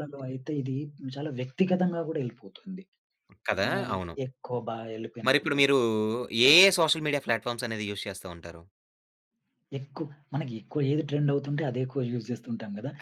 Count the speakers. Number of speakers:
2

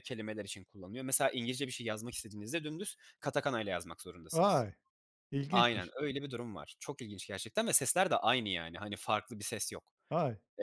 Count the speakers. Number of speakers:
2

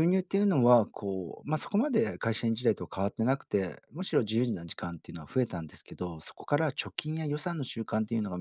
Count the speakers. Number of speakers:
1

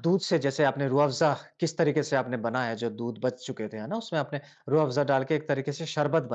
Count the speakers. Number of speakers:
1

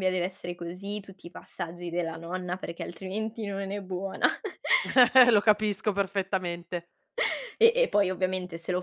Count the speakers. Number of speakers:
2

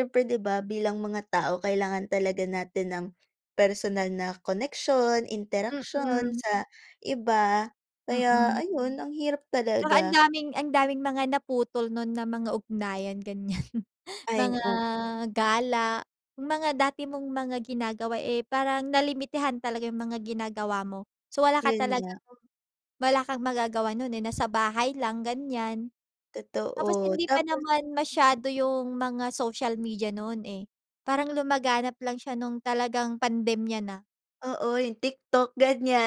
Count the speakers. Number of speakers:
2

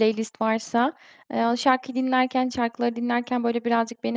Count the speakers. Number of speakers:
1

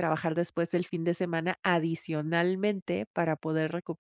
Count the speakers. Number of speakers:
1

